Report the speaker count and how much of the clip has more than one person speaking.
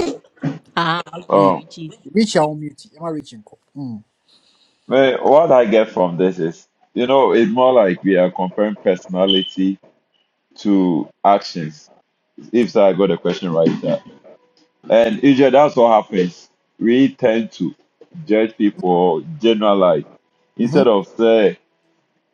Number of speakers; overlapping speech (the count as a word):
three, about 3%